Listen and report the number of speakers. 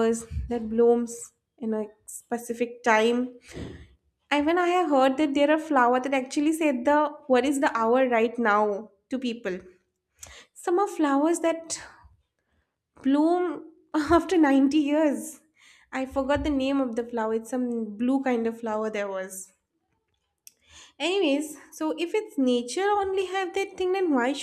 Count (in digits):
1